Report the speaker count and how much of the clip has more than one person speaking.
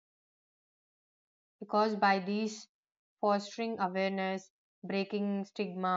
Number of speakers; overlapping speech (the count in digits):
1, no overlap